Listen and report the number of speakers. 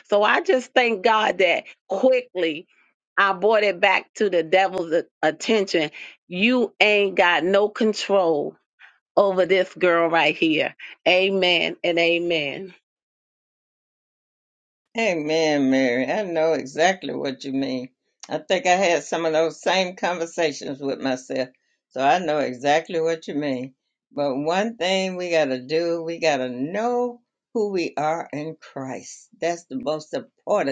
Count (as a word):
two